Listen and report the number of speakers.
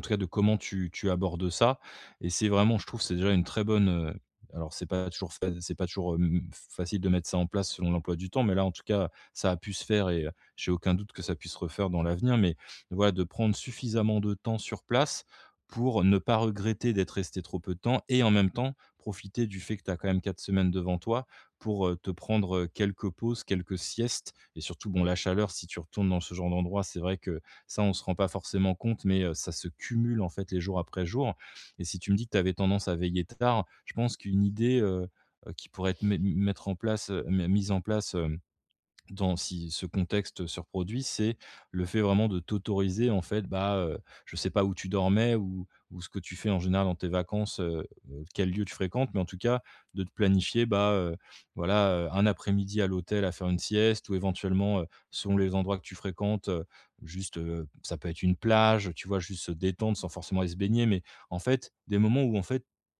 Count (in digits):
1